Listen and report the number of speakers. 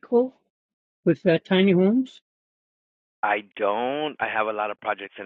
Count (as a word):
two